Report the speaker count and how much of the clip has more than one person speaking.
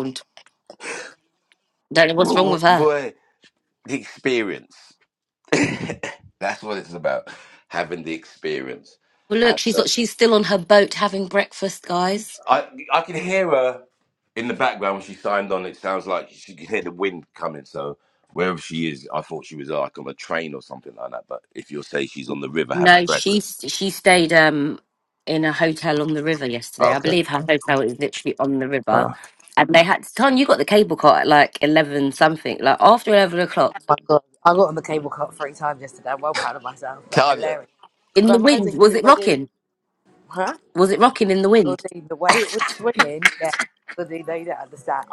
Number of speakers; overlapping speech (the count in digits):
3, about 9%